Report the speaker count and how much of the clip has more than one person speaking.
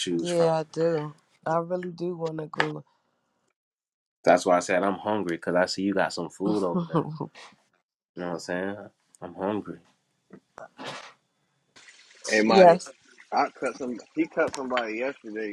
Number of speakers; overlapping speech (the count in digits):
3, about 5%